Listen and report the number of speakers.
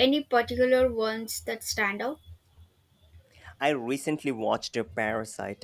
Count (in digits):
2